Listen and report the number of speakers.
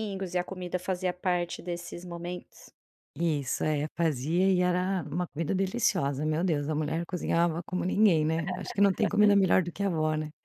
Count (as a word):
two